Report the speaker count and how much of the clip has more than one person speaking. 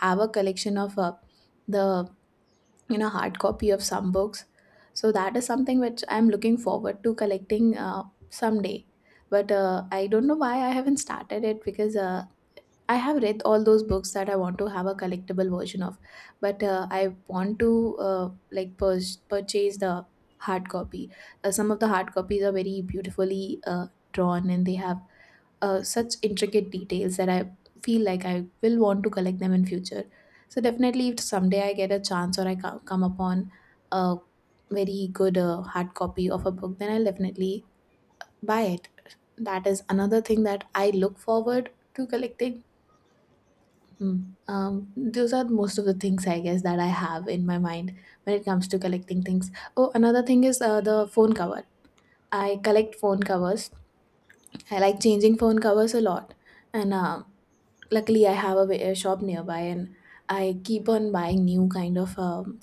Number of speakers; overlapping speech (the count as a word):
one, no overlap